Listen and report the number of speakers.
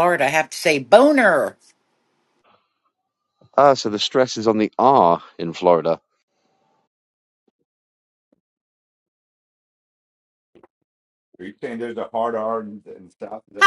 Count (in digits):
3